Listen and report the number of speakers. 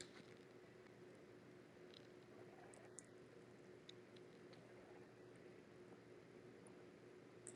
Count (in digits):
0